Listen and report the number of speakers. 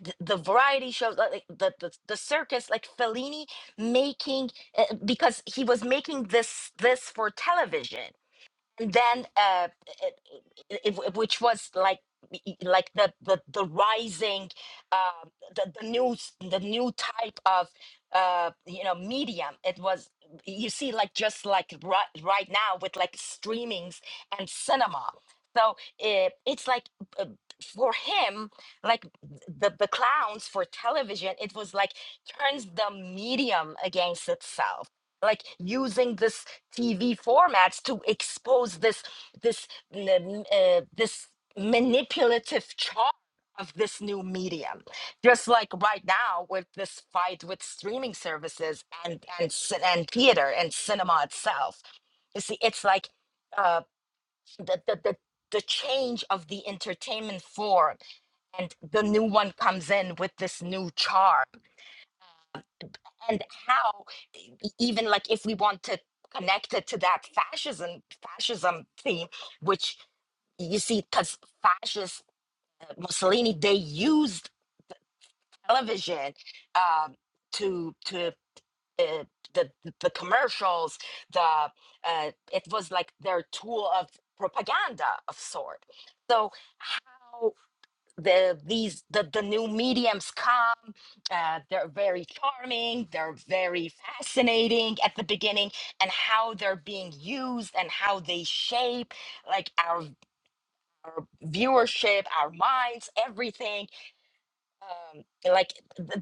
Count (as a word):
one